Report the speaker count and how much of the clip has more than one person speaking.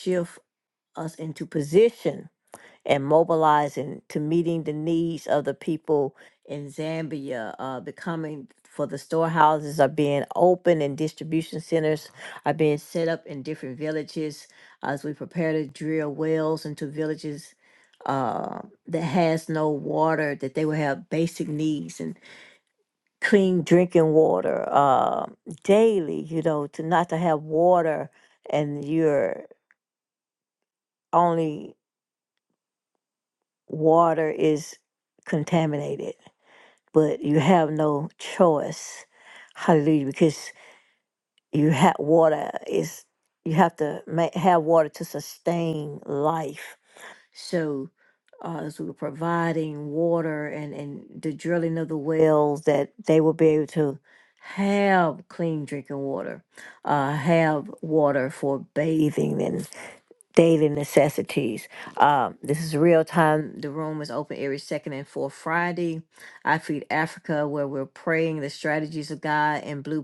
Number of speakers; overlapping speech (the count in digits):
1, no overlap